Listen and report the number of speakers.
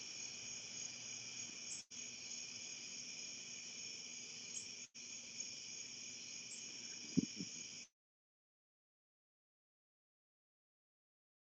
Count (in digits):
0